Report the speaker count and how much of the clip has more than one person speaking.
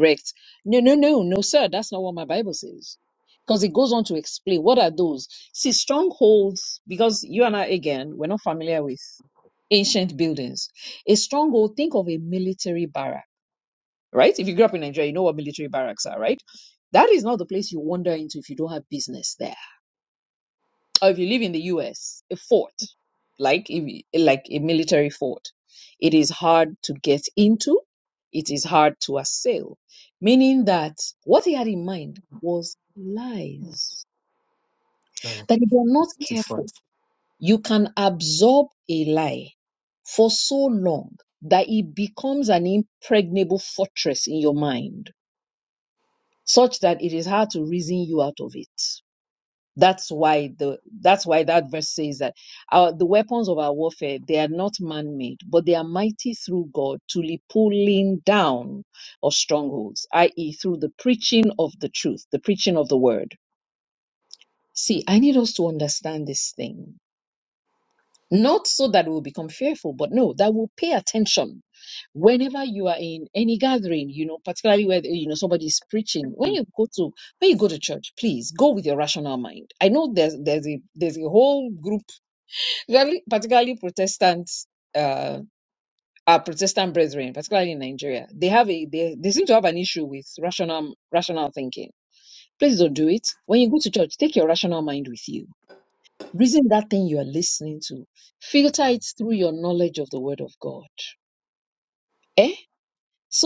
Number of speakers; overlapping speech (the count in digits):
1, no overlap